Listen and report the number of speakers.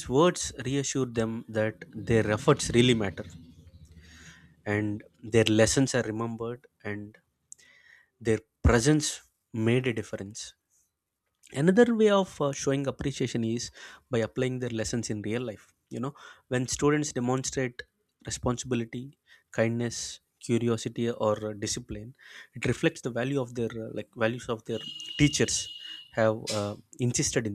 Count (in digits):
1